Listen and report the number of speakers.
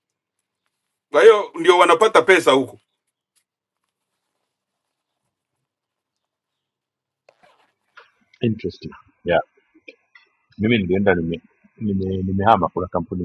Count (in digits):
2